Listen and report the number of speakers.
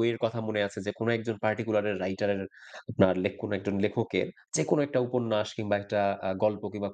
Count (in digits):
1